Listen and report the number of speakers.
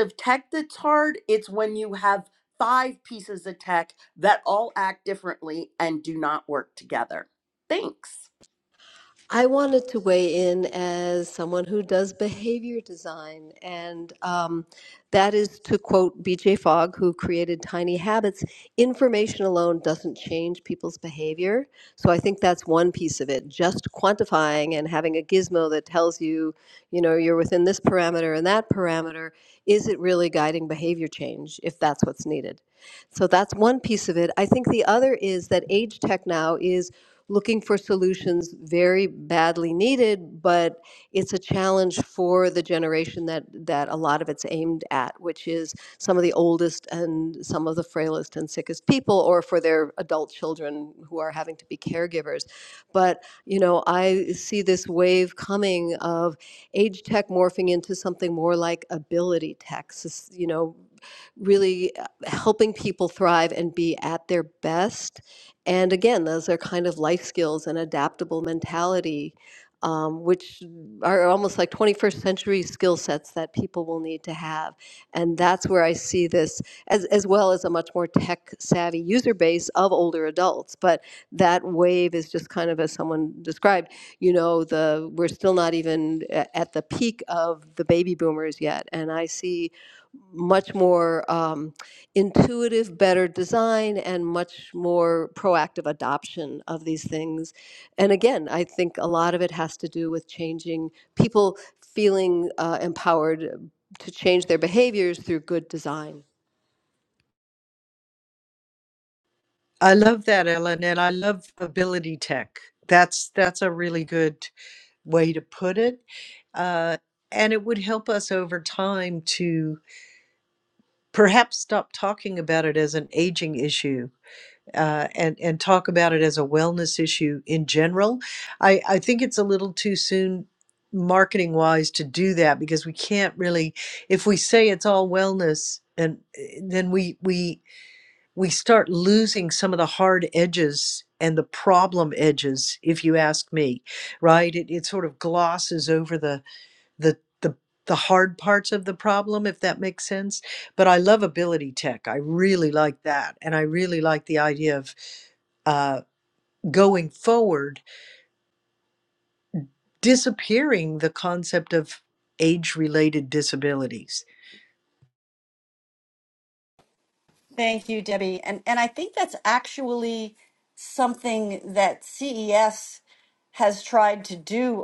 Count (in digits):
4